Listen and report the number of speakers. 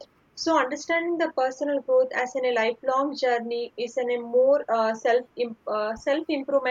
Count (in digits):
1